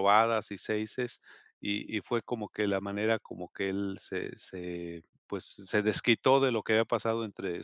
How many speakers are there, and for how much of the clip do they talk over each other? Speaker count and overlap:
1, no overlap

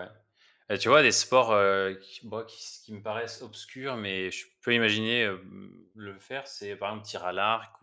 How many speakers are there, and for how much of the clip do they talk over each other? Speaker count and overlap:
1, no overlap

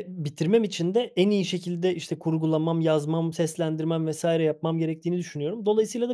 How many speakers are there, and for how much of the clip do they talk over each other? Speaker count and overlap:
1, no overlap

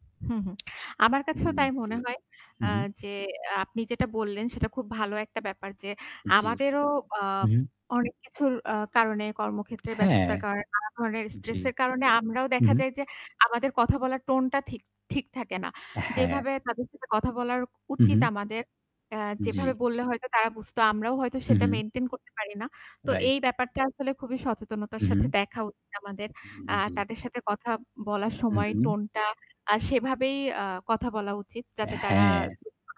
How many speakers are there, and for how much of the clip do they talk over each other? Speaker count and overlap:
2, about 13%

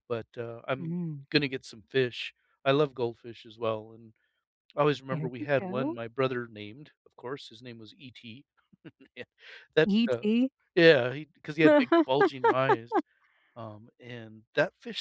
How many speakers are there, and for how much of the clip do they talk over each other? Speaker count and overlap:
2, about 9%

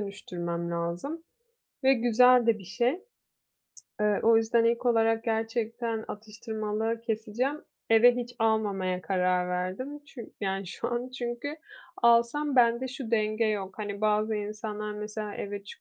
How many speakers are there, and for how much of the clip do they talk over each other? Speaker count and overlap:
1, no overlap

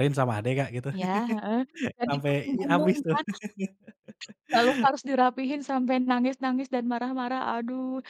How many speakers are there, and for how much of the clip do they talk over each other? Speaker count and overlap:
2, about 14%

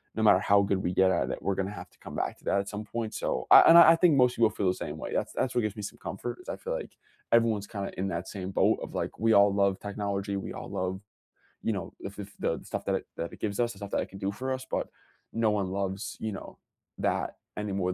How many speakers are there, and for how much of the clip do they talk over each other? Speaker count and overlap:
1, no overlap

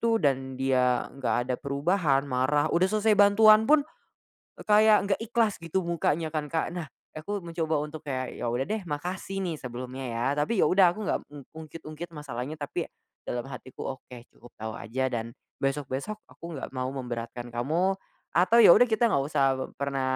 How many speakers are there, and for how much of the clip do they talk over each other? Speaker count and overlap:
1, no overlap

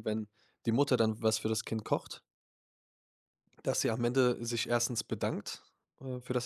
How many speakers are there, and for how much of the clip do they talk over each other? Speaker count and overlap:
1, no overlap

